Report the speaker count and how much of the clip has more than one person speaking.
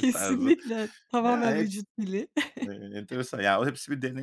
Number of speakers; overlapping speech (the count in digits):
2, about 23%